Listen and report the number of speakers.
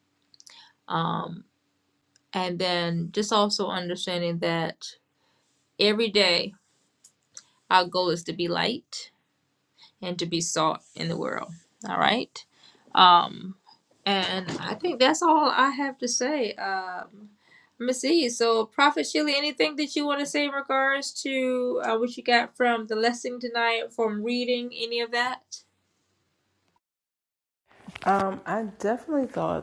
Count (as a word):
two